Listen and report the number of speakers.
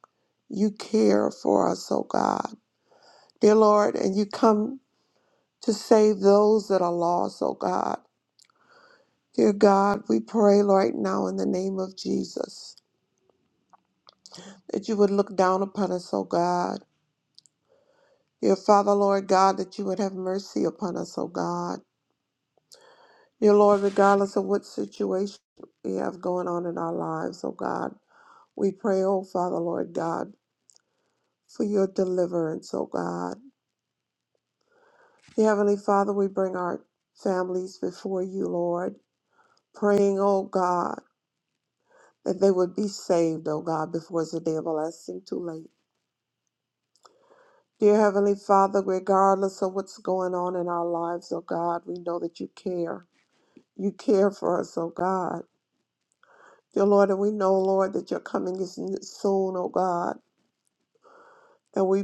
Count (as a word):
one